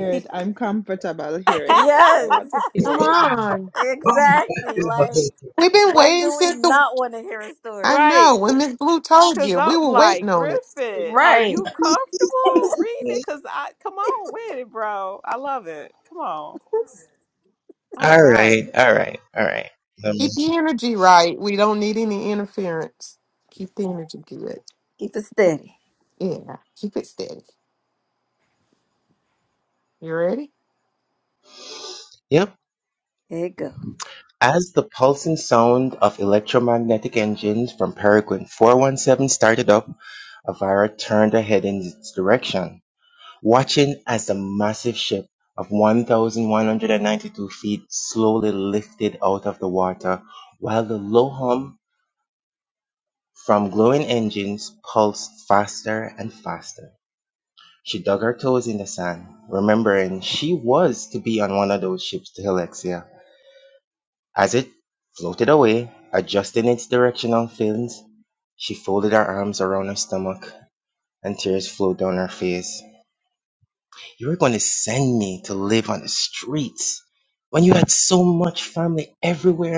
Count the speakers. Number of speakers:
five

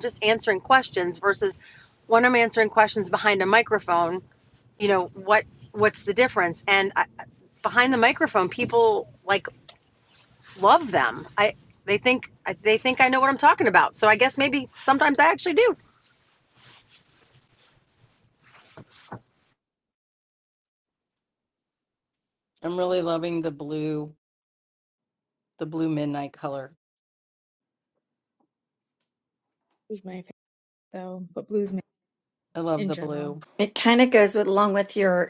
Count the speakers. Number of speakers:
four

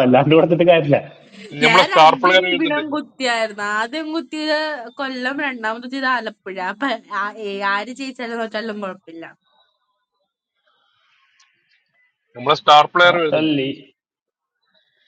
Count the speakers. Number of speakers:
three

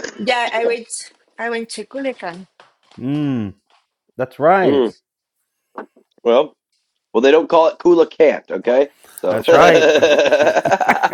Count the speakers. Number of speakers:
three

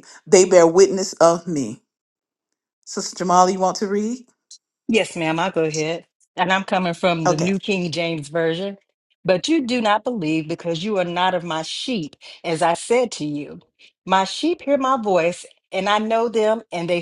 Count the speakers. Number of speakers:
two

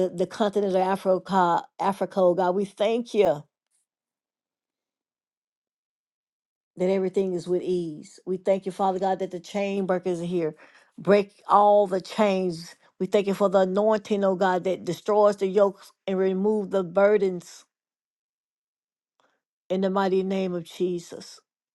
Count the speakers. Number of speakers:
one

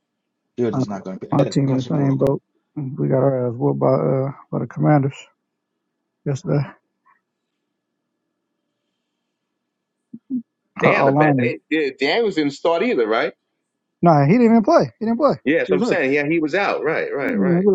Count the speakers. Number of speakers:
three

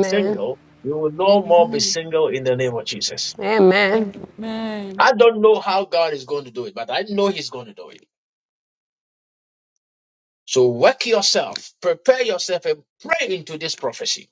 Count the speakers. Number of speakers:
three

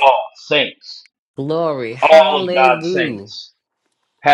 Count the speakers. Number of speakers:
two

